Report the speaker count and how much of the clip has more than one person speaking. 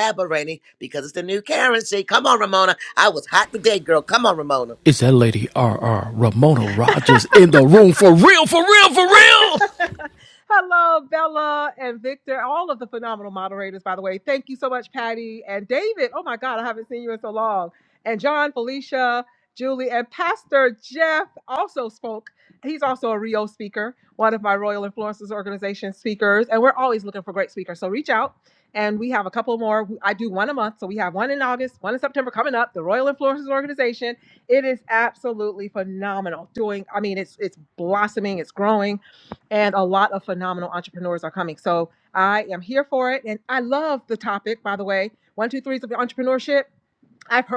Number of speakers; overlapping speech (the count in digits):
3, no overlap